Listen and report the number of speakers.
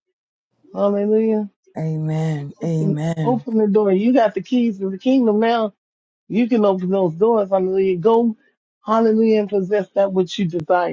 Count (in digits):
2